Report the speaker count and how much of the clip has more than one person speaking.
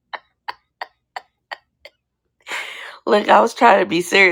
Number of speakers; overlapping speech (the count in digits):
1, no overlap